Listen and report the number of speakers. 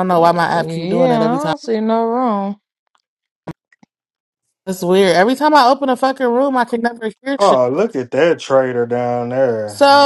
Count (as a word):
three